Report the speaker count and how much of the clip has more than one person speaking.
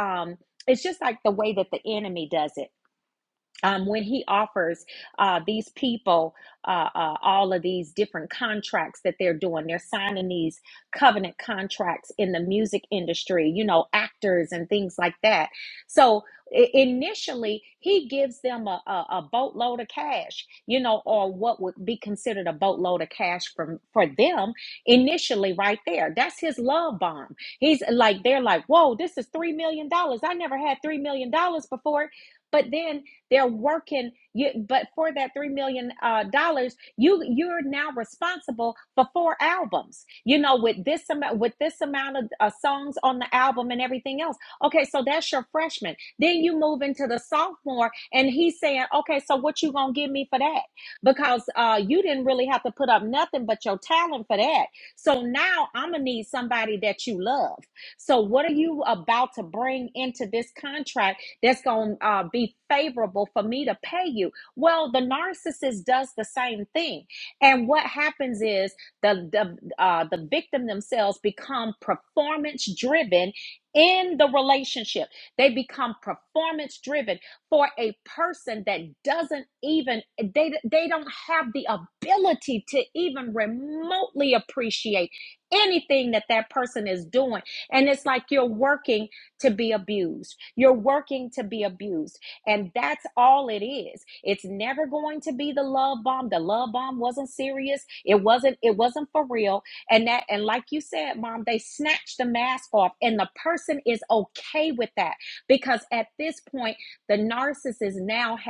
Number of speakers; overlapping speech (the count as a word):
one, no overlap